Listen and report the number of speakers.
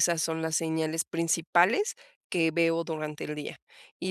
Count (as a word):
one